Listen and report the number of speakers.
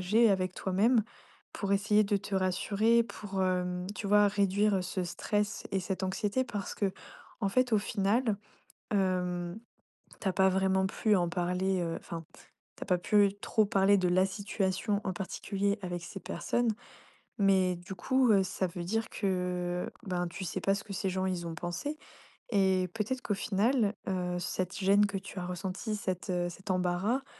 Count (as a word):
one